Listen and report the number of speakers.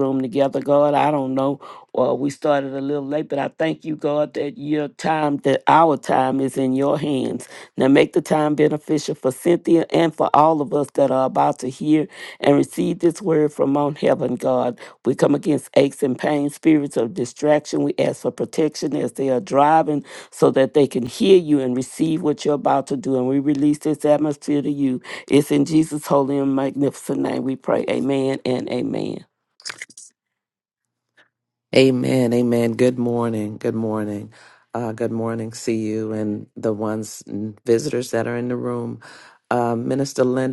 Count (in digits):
2